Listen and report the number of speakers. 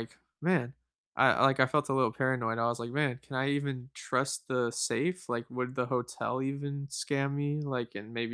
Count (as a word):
one